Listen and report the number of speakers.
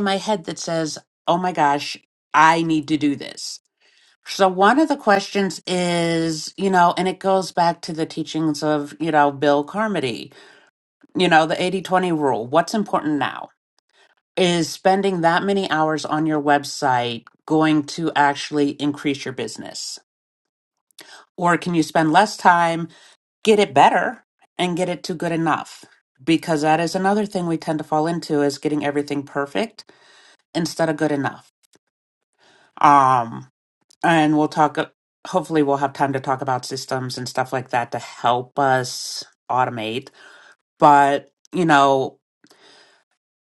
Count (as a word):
one